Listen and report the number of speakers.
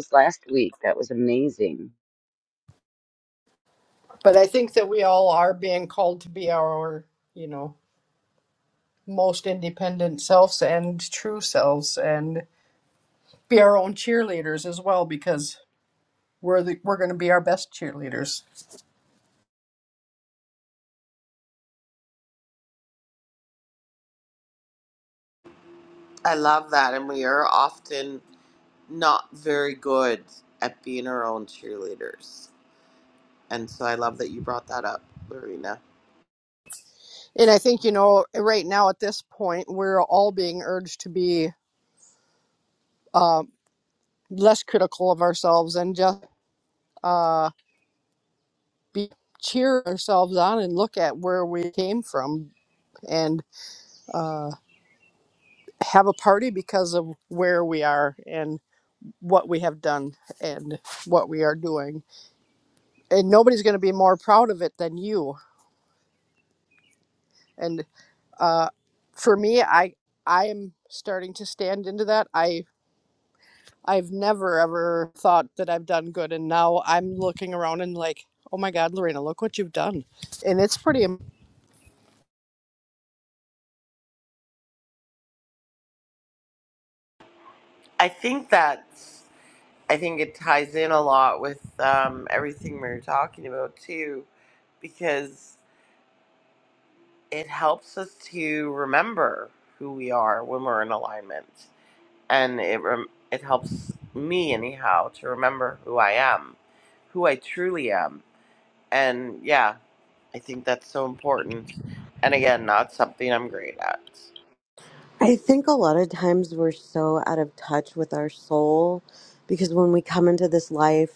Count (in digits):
4